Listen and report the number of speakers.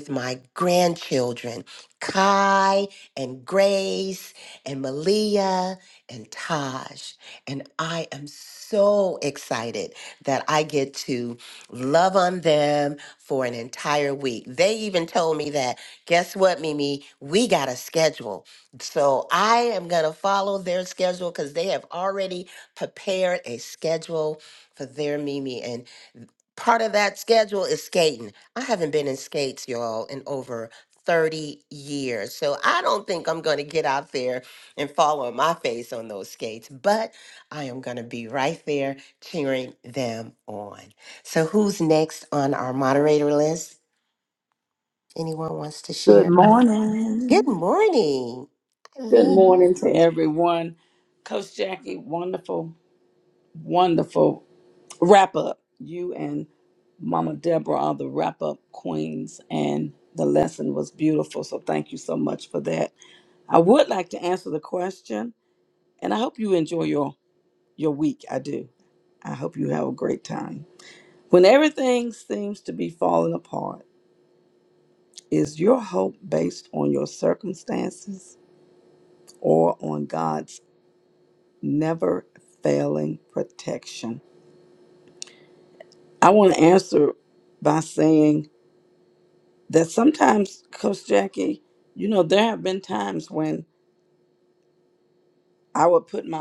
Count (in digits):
2